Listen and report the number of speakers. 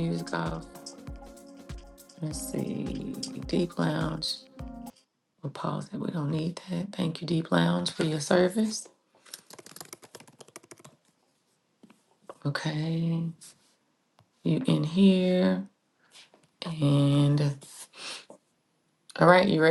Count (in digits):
1